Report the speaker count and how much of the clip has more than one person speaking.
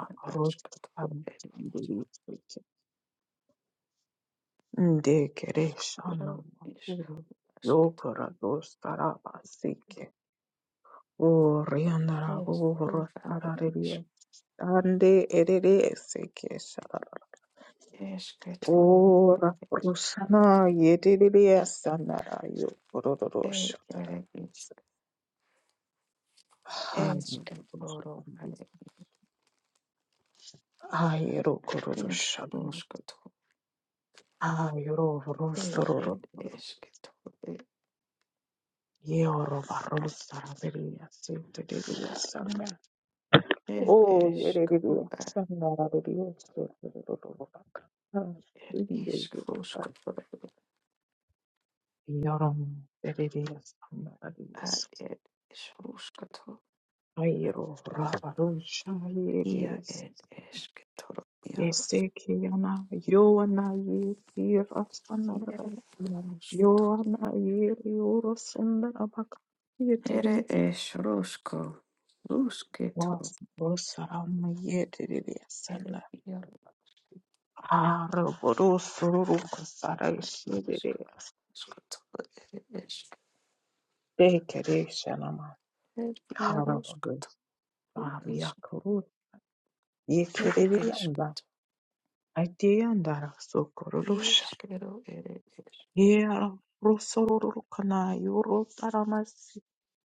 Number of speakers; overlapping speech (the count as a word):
two, about 13%